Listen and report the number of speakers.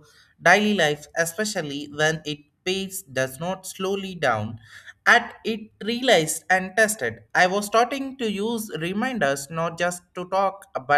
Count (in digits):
1